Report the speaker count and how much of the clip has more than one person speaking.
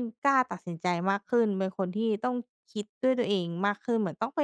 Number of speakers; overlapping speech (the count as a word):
one, no overlap